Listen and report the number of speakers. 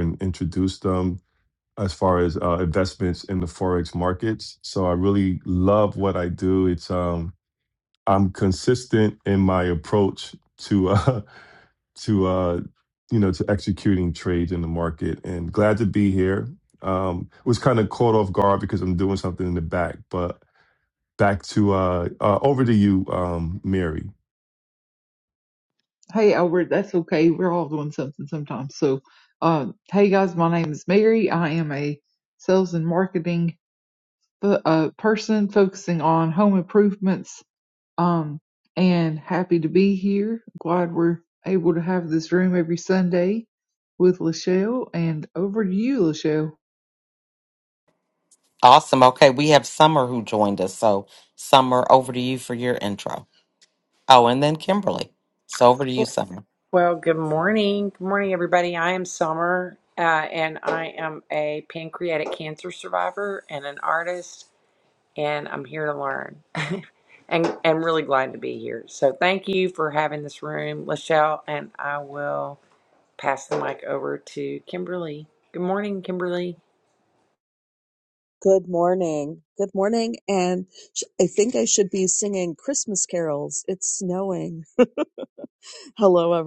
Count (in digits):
5